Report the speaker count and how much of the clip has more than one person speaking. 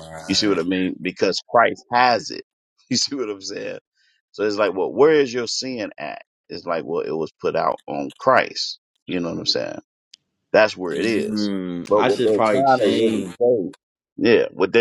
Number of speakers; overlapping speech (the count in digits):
2, about 15%